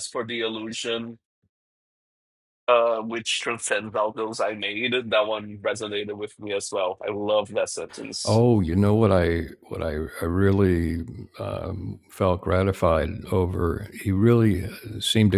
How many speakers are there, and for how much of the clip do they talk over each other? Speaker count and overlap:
two, no overlap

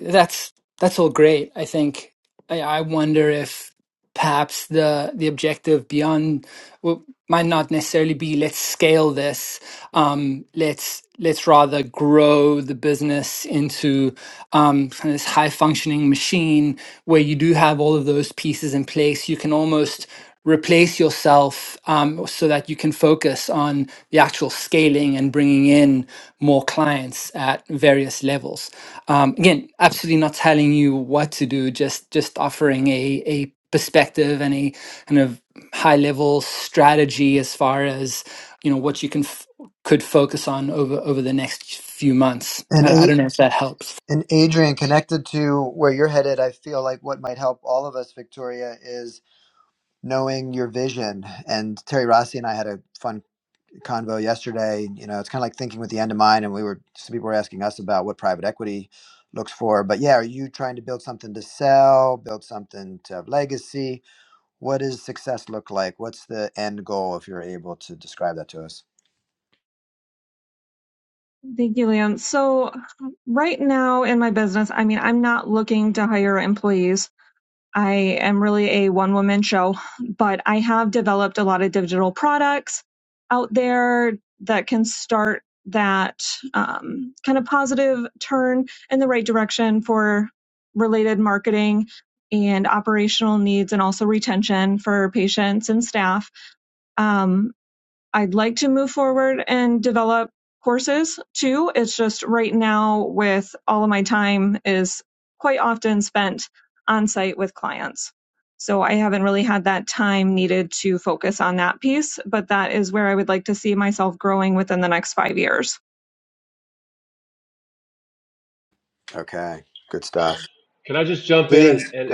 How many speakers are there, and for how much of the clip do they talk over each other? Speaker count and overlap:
four, about 1%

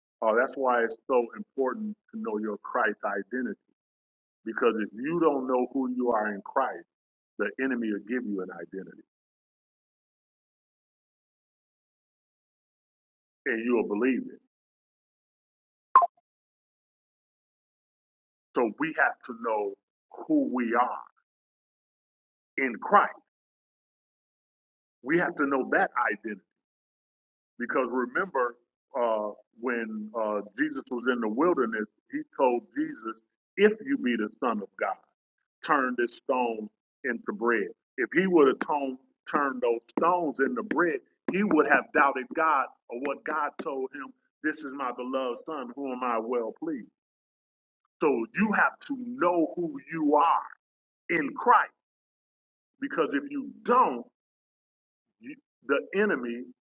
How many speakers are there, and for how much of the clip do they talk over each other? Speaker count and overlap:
one, no overlap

